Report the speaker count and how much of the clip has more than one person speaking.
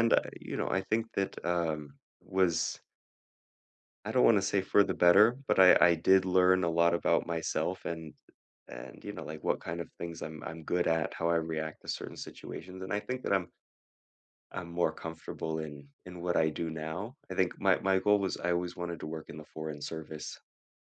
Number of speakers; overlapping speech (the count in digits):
1, no overlap